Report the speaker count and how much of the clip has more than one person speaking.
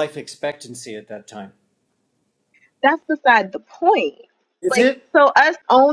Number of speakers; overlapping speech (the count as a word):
two, about 5%